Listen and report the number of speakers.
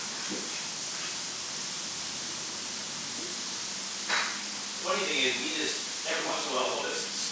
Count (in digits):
1